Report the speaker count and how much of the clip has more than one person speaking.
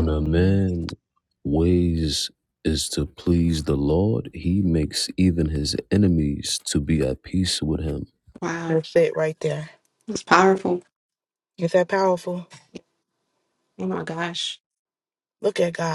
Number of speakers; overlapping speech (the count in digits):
3, about 4%